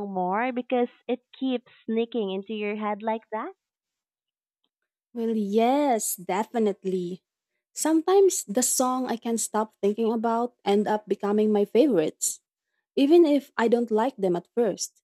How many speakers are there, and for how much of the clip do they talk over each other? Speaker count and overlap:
two, no overlap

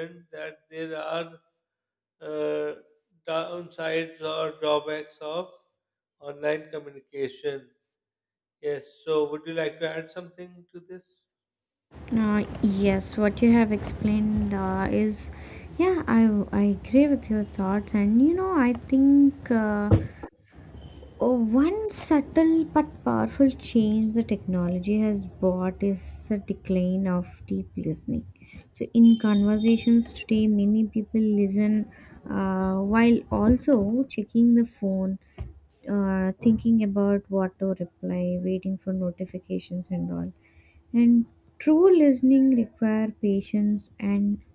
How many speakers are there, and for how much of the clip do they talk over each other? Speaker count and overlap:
two, no overlap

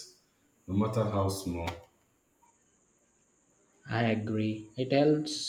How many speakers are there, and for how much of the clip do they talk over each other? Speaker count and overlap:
two, no overlap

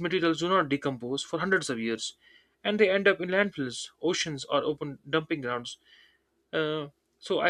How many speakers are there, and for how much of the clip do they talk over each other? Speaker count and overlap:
one, no overlap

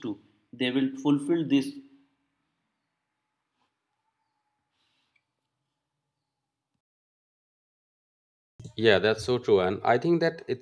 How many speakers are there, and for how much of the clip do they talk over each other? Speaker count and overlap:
two, no overlap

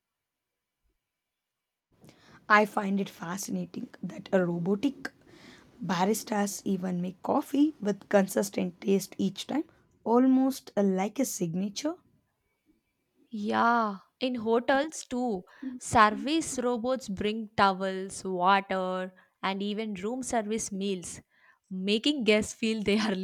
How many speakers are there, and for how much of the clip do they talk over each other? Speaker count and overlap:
two, no overlap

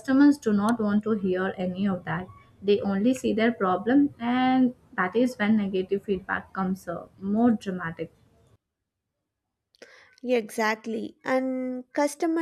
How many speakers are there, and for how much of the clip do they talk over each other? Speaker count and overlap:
two, no overlap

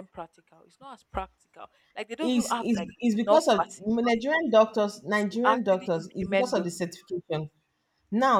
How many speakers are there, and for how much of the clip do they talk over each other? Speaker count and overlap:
two, about 29%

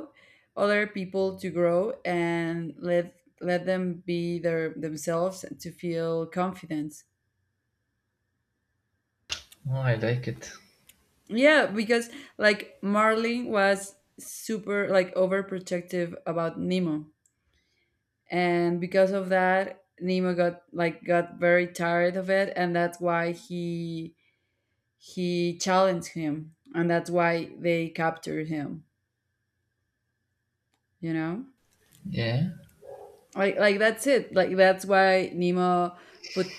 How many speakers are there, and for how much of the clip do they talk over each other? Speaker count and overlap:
two, no overlap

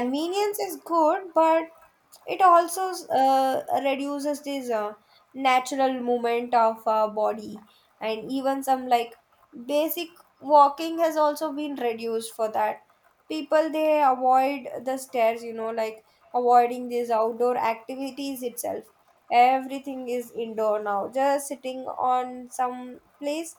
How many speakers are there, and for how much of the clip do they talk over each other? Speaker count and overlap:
one, no overlap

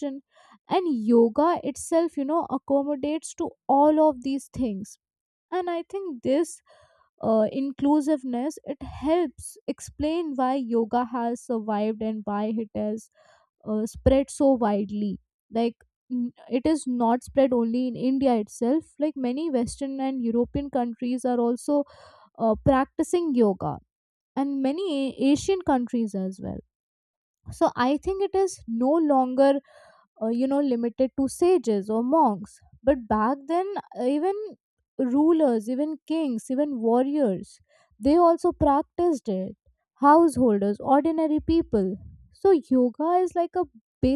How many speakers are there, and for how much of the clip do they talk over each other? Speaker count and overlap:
one, no overlap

